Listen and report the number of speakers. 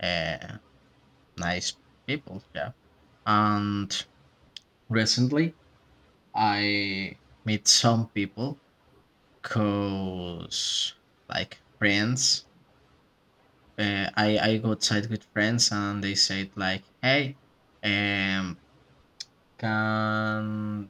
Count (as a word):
one